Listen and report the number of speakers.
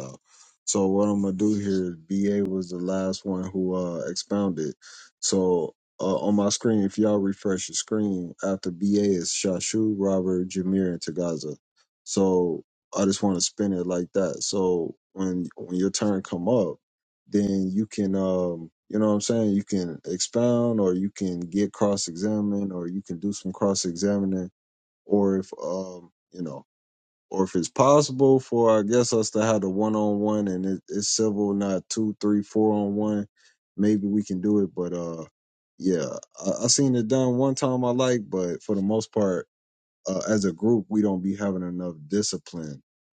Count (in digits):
1